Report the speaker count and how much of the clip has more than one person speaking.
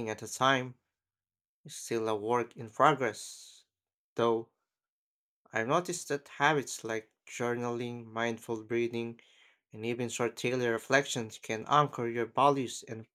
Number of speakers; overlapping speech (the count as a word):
one, no overlap